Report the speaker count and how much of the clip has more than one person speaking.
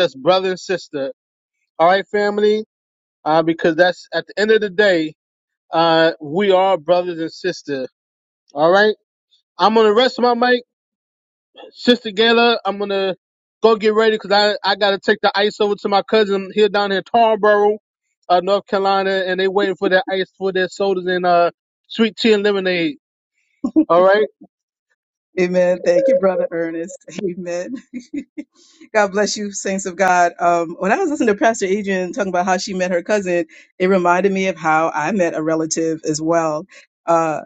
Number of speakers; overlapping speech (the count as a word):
two, no overlap